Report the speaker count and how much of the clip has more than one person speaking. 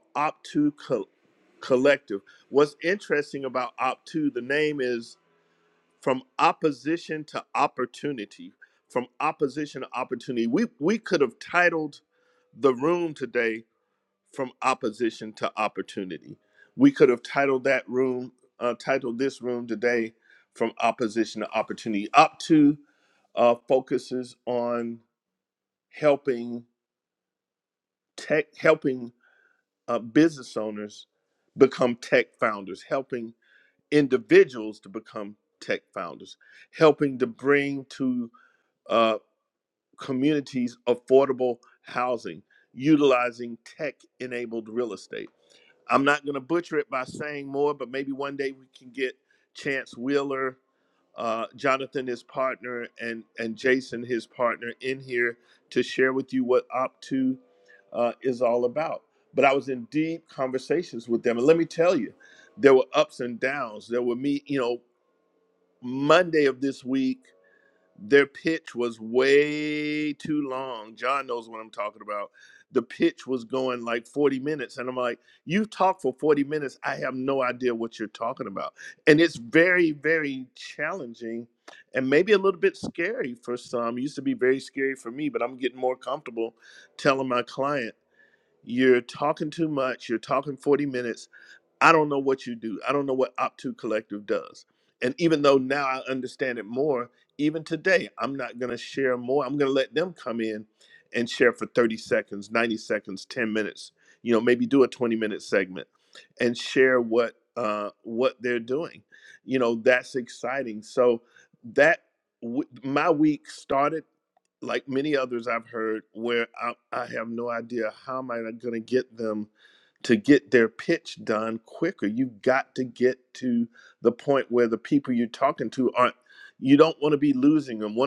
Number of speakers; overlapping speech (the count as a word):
one, no overlap